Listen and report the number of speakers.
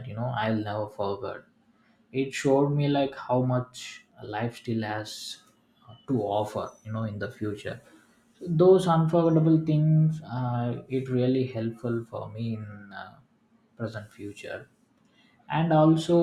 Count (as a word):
one